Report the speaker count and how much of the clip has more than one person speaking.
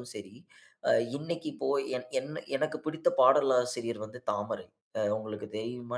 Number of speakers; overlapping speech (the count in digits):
1, no overlap